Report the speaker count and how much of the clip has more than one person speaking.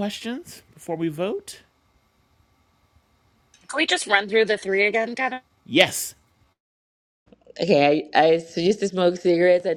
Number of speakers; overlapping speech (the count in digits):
3, no overlap